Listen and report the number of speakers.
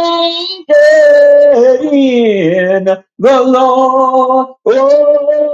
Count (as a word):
one